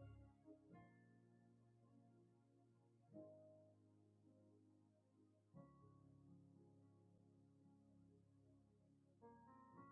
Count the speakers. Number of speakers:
0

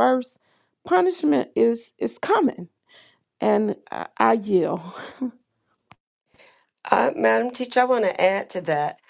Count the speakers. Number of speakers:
2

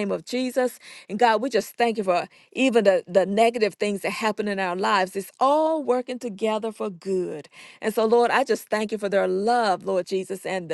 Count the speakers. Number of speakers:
1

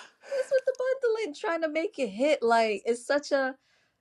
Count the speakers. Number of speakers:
1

